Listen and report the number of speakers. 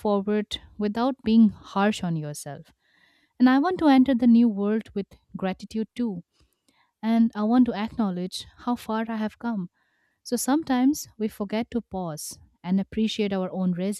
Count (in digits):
1